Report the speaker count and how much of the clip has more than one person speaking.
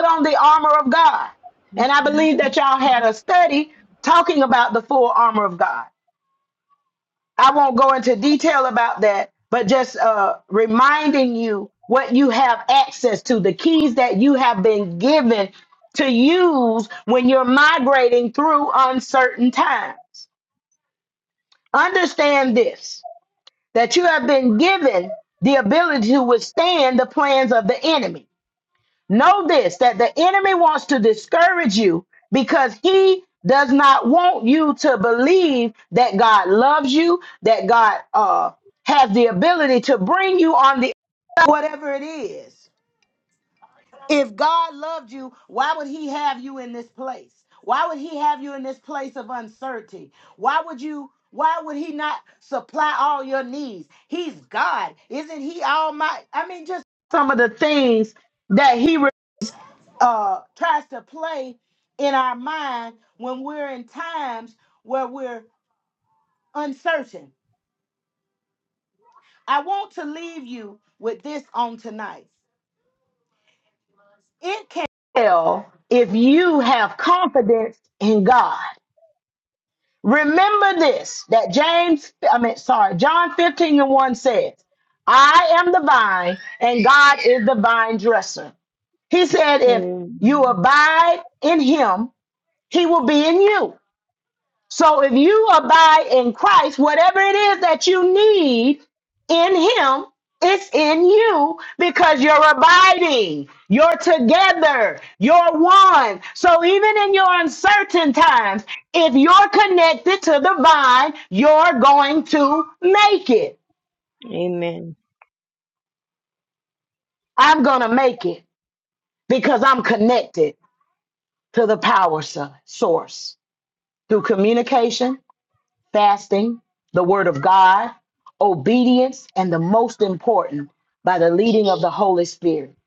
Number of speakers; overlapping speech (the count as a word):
two, under 1%